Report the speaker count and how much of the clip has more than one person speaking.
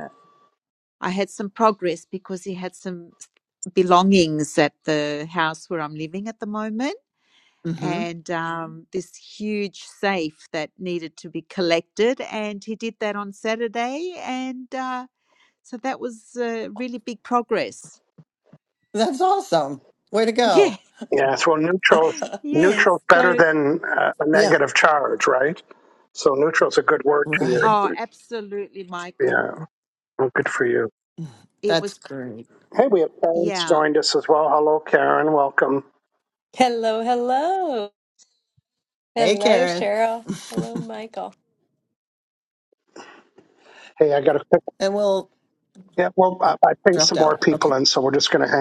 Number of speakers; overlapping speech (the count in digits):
4, about 10%